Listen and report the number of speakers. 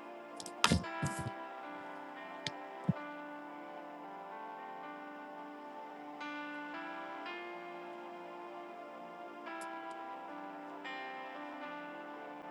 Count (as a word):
zero